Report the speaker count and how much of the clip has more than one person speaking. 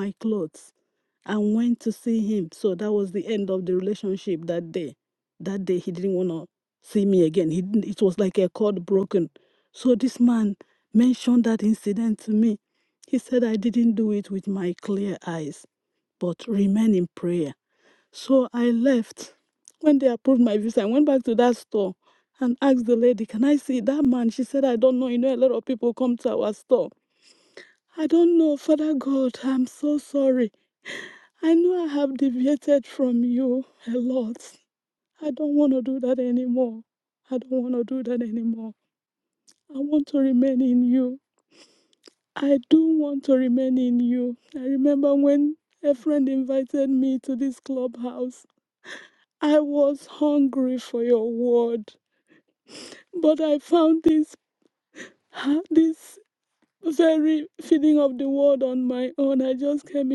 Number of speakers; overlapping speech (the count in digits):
1, no overlap